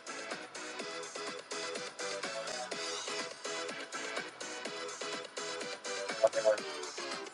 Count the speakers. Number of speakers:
0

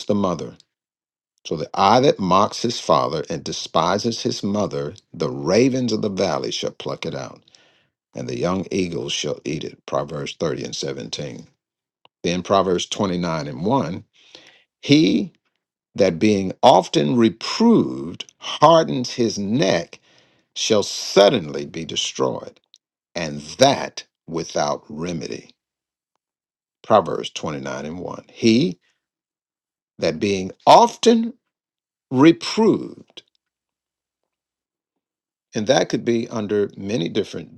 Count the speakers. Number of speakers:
1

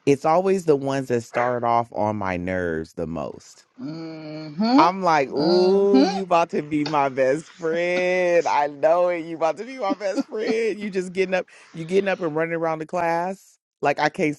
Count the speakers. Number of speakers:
2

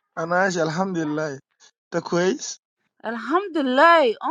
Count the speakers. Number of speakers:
2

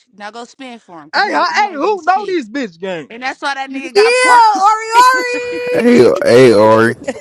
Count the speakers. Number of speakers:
4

